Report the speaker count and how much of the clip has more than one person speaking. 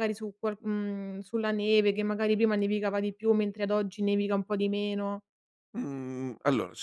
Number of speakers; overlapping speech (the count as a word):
two, no overlap